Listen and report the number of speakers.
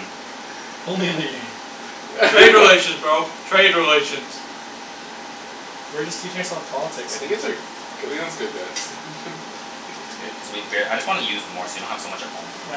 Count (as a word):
four